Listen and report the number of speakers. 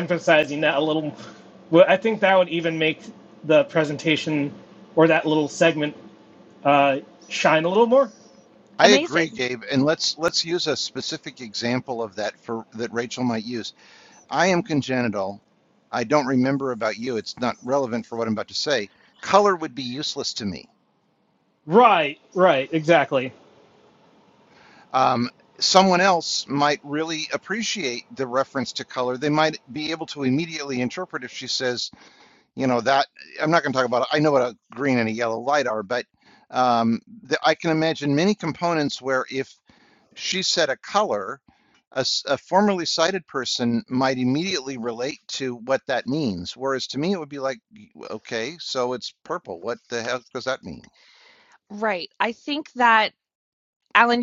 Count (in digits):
3